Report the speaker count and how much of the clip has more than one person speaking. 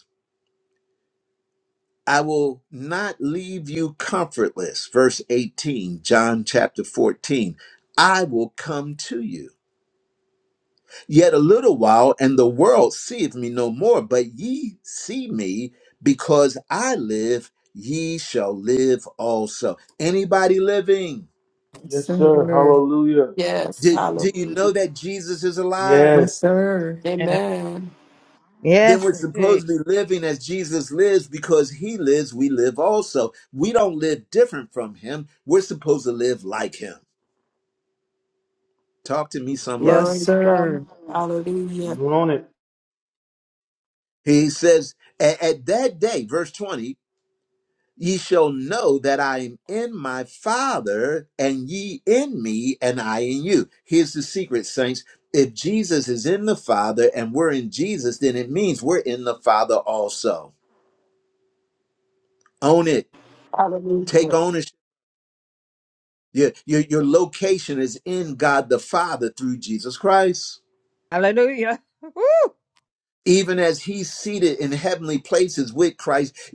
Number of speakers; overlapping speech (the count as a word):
five, about 6%